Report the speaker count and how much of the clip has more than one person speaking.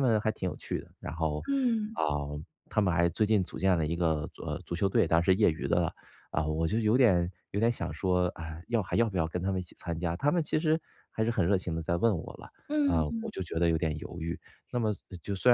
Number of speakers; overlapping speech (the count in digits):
2, about 3%